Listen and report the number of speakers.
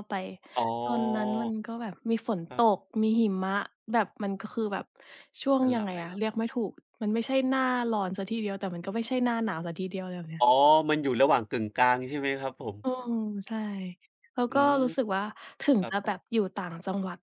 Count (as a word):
two